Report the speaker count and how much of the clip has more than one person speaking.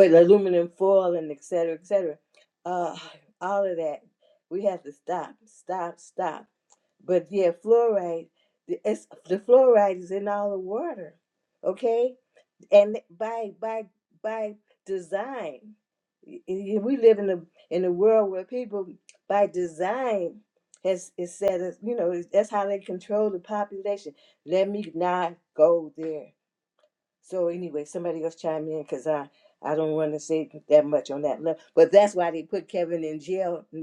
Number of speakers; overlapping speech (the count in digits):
1, no overlap